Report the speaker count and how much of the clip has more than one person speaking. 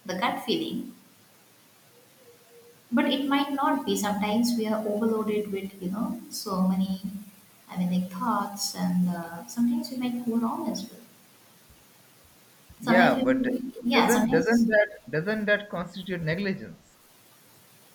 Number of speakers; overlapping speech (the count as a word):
two, about 7%